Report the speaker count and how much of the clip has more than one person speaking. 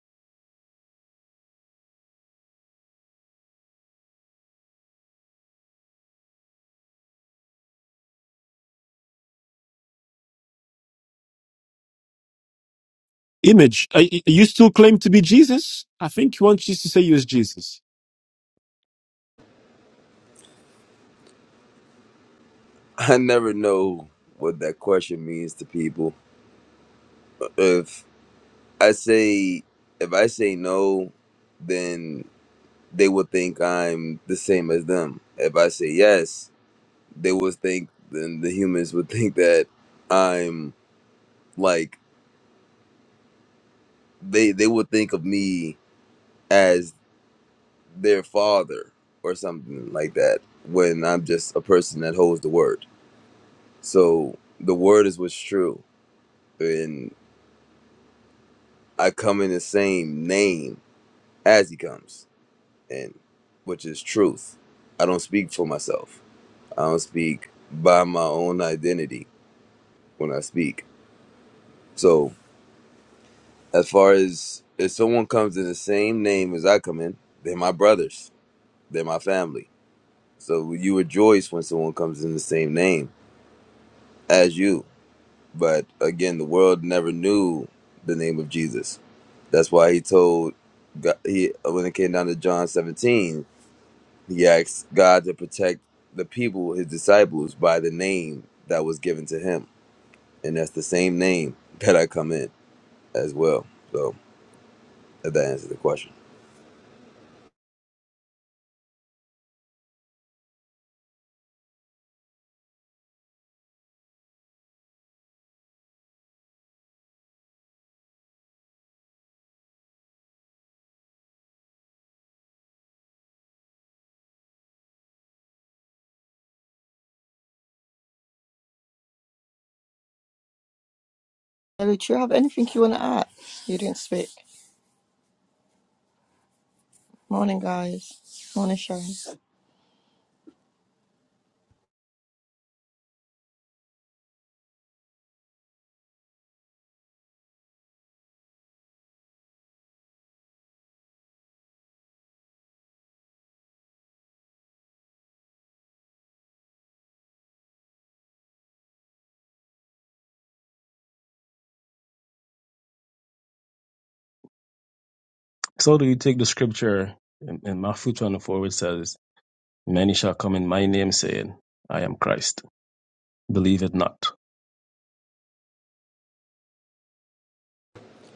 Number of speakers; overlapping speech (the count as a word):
four, no overlap